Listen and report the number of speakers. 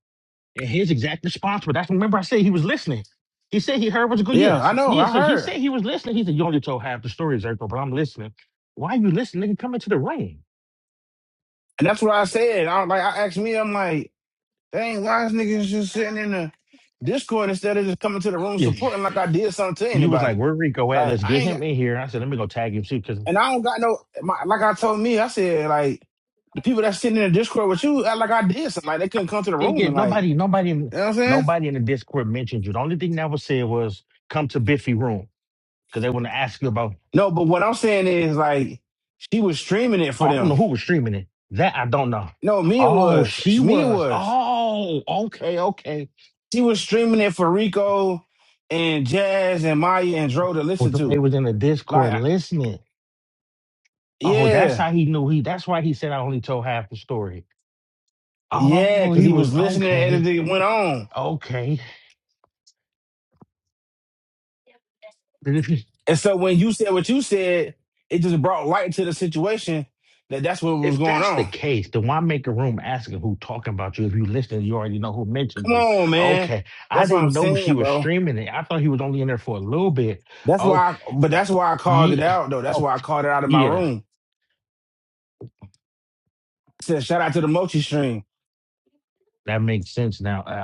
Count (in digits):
2